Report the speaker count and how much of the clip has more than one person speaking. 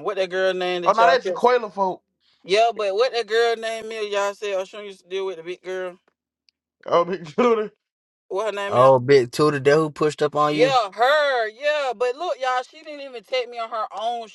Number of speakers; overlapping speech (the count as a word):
three, about 7%